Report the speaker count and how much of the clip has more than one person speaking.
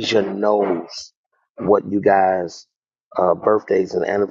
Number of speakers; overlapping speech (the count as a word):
one, no overlap